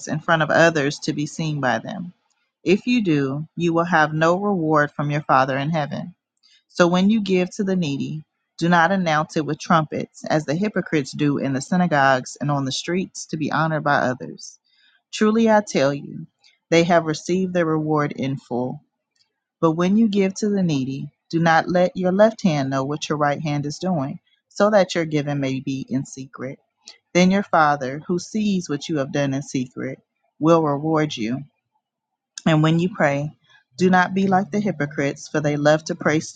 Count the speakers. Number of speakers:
one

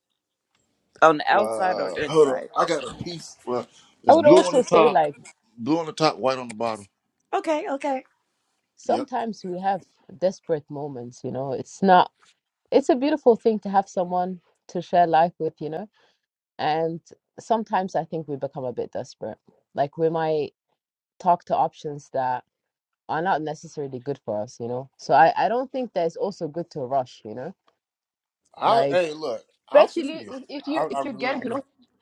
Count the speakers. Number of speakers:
three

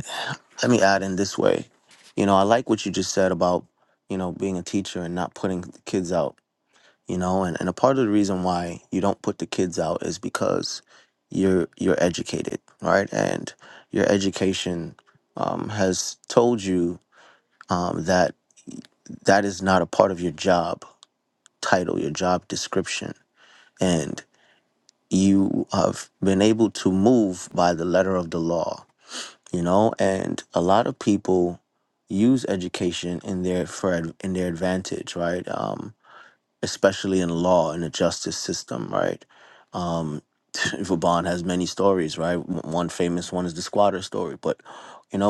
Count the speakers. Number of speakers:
one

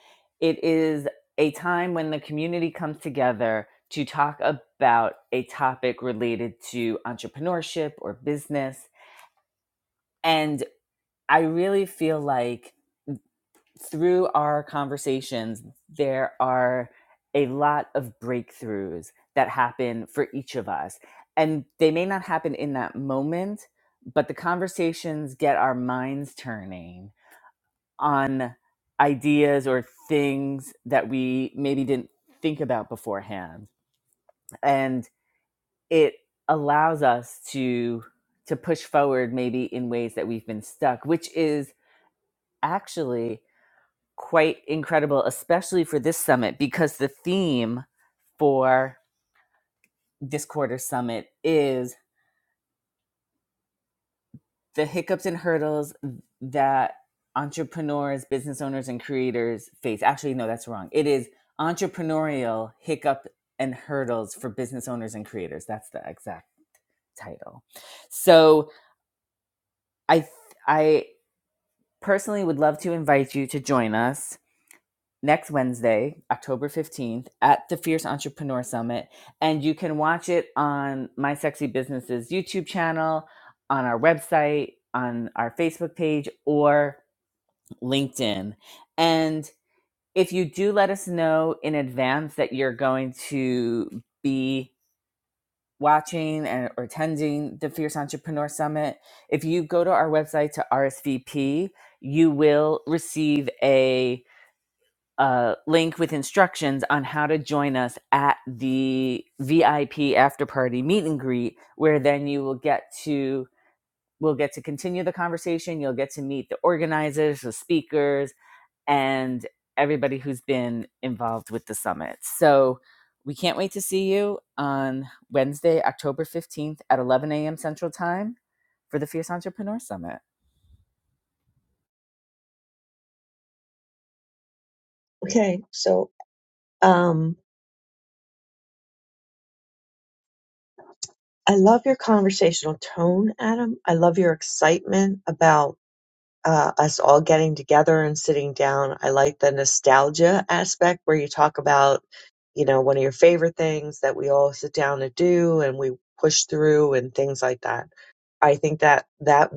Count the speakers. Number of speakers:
two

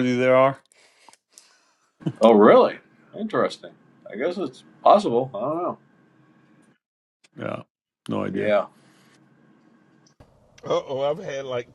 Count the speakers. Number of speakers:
three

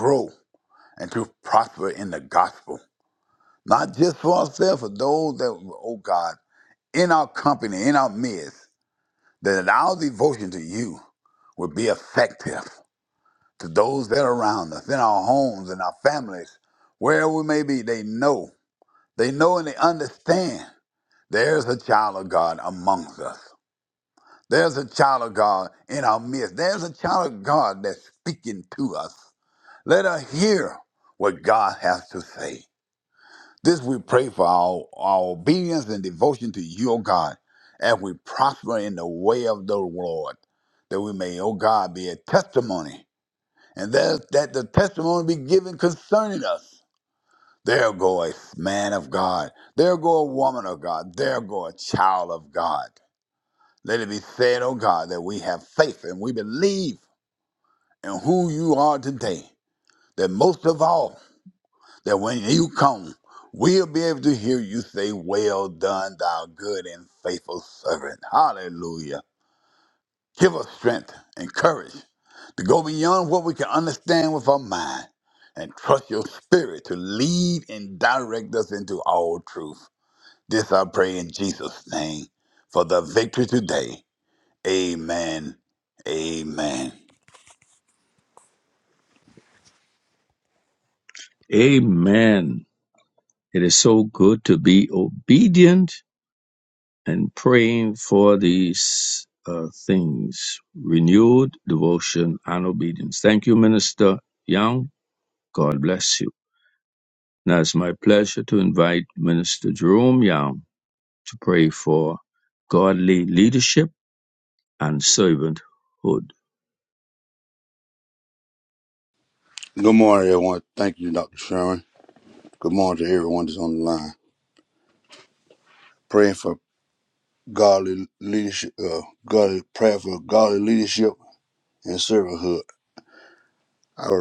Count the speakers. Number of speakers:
three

